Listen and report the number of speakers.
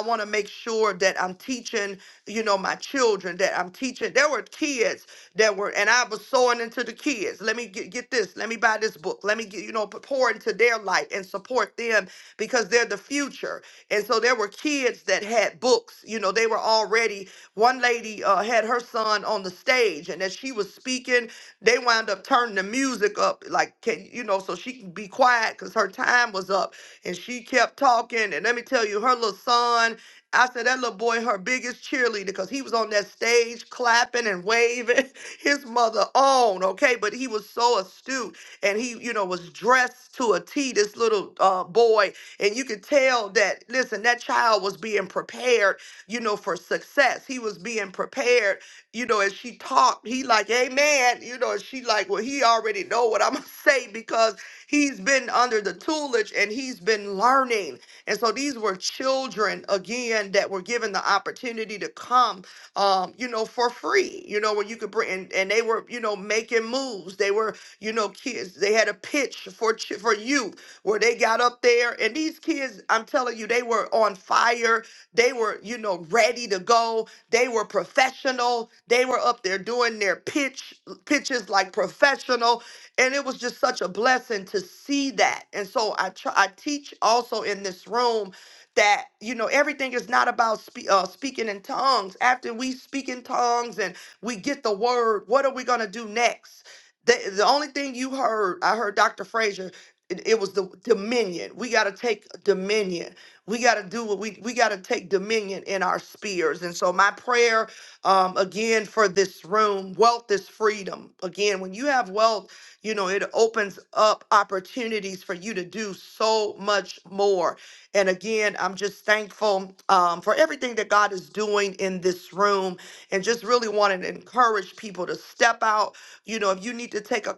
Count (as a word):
one